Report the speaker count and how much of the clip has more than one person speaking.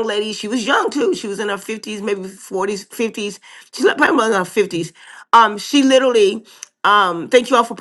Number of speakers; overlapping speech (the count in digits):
1, no overlap